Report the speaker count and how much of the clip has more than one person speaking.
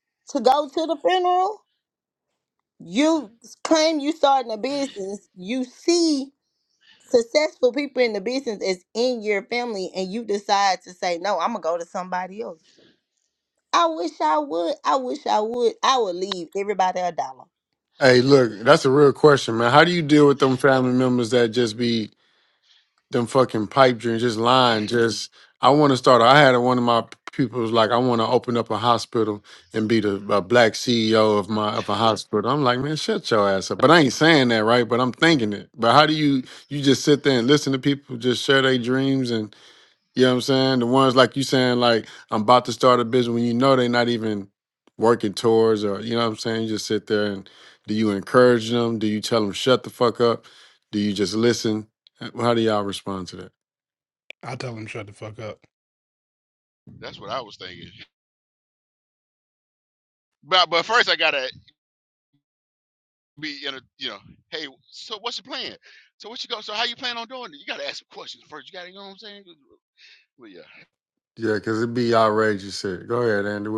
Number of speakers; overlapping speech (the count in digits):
4, no overlap